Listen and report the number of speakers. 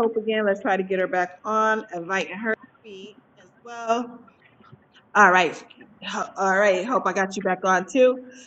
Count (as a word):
one